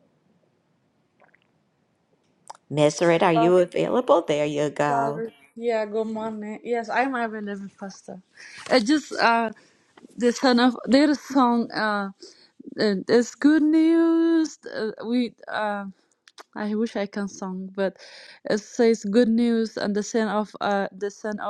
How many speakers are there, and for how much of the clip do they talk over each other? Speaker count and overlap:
2, about 1%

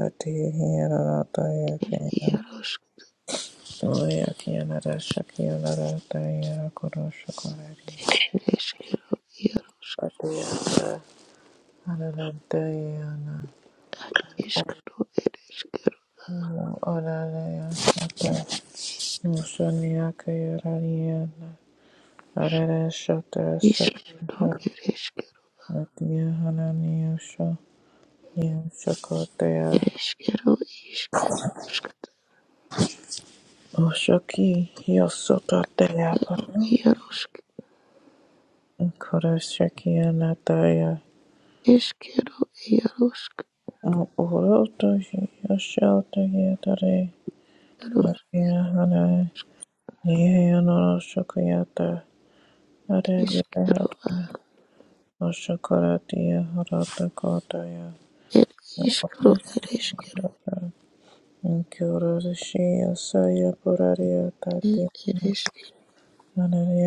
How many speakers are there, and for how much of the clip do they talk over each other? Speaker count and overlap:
2, about 3%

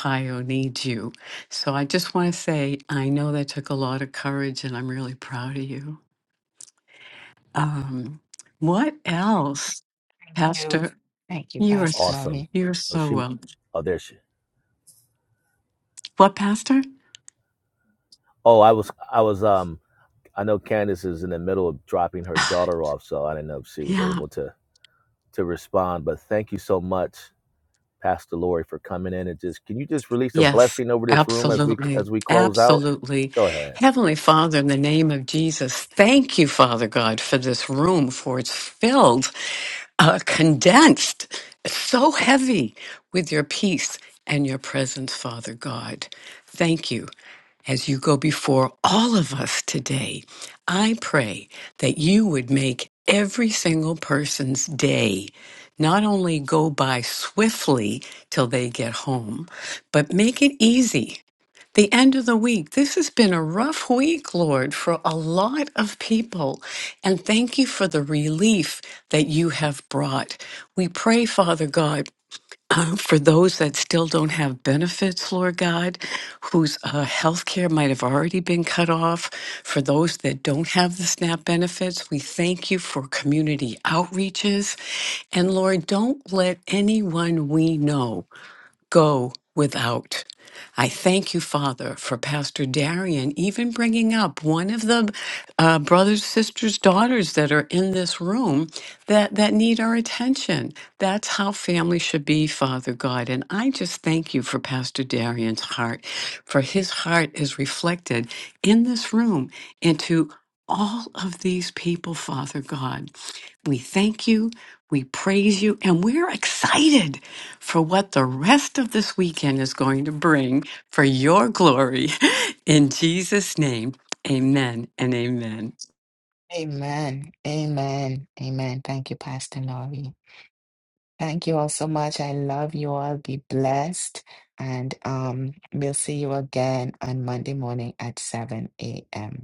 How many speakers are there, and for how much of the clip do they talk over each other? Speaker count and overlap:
3, about 3%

